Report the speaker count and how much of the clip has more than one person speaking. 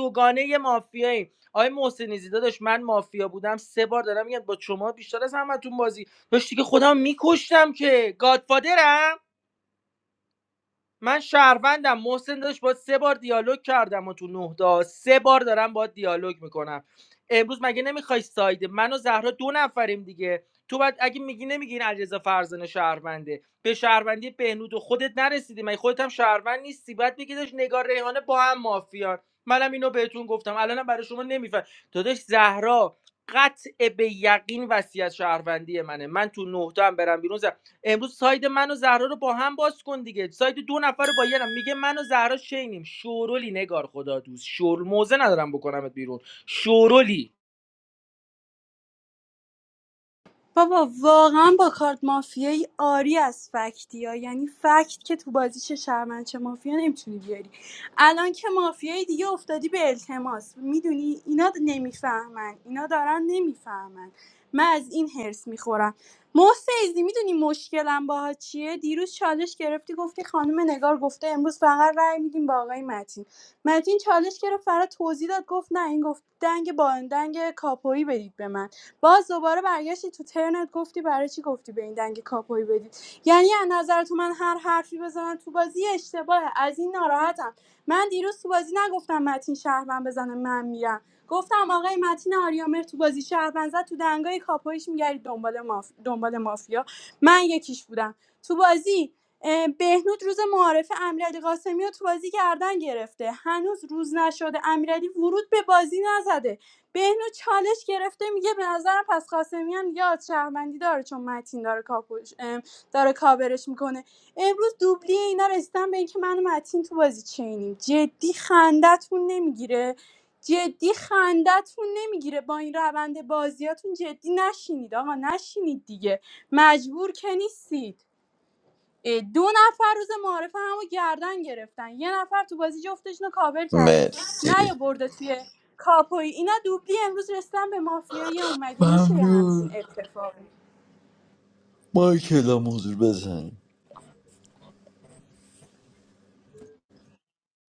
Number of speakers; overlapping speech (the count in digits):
3, about 1%